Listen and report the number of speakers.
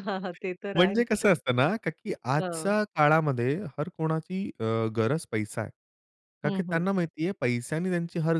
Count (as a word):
two